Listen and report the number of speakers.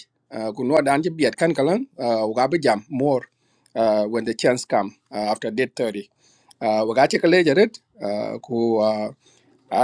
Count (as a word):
one